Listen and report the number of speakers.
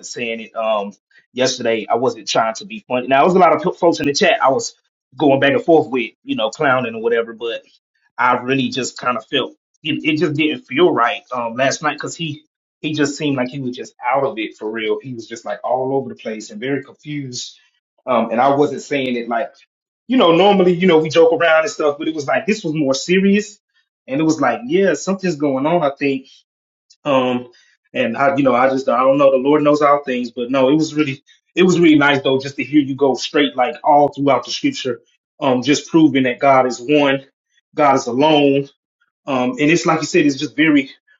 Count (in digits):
1